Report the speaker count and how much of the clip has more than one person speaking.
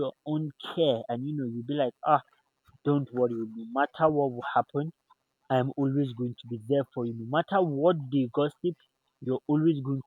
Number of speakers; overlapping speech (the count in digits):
1, no overlap